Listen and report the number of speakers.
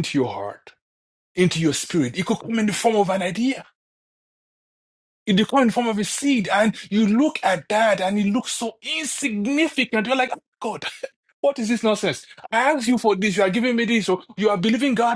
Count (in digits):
1